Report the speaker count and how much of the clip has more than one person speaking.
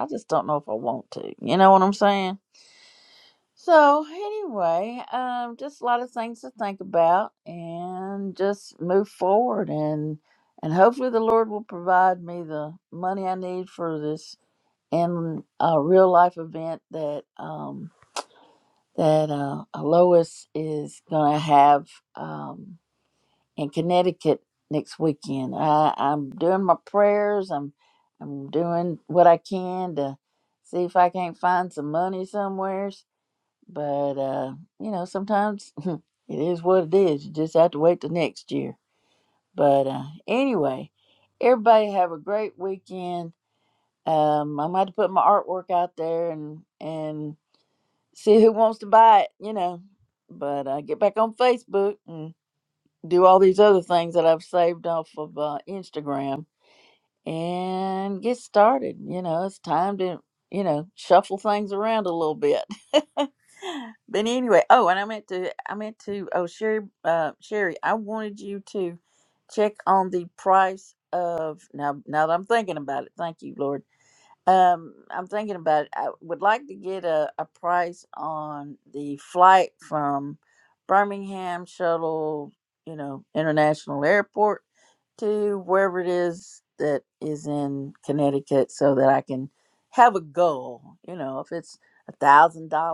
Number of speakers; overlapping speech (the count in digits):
1, no overlap